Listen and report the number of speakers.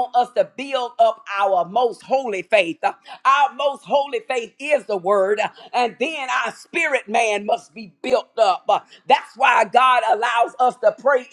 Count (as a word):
one